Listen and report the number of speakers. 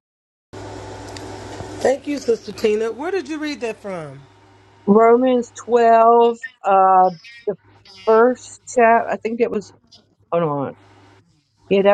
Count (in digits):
2